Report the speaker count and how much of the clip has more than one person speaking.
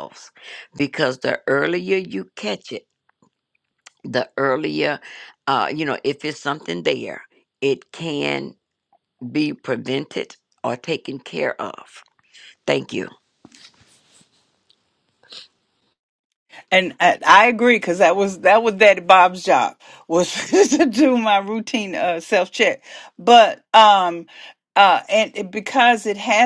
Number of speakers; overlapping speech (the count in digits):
2, no overlap